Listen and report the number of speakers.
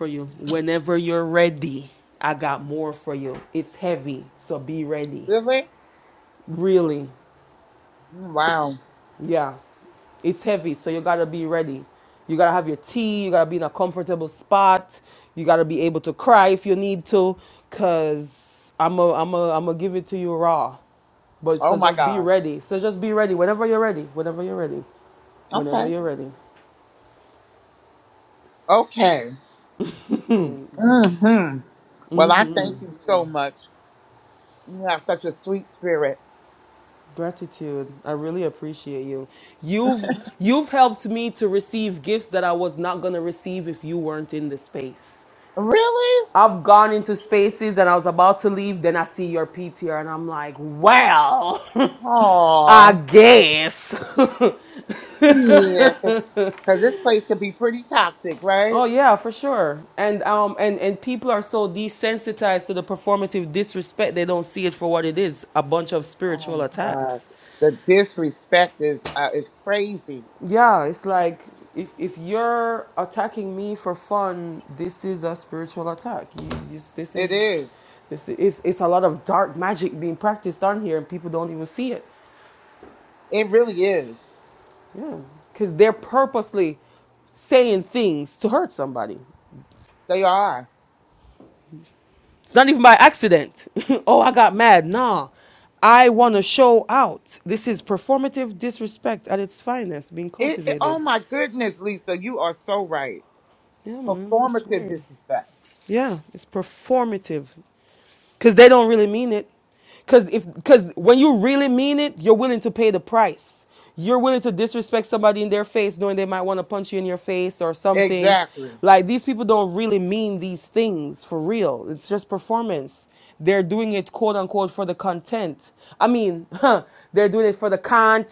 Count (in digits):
2